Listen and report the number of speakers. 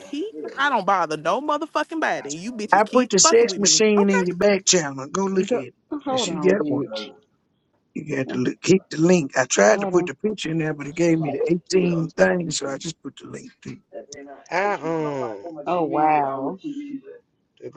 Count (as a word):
four